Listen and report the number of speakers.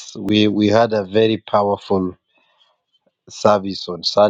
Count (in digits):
1